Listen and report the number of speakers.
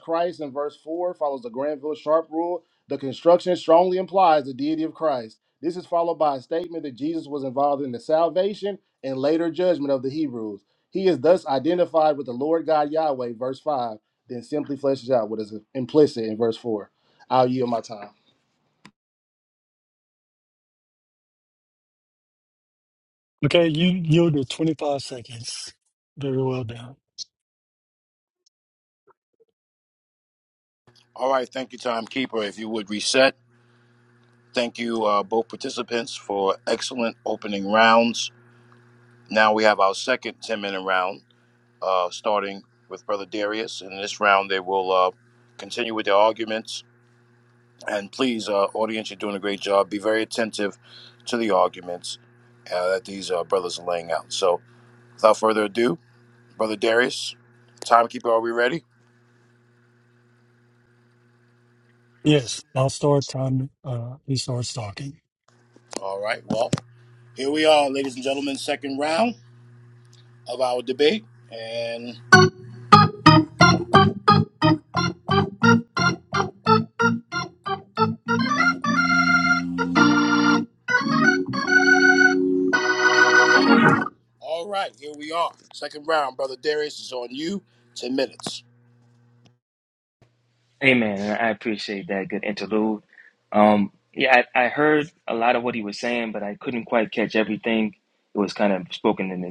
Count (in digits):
4